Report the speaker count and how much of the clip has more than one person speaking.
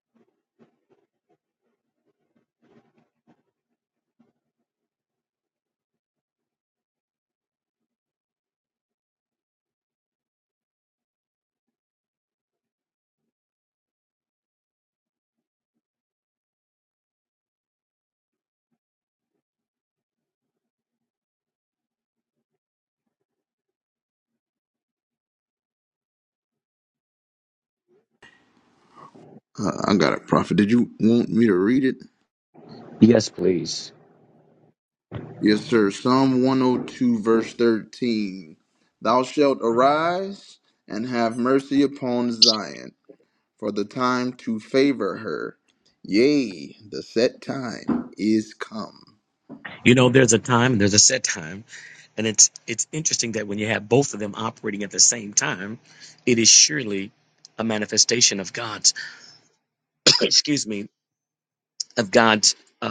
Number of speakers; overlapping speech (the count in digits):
2, no overlap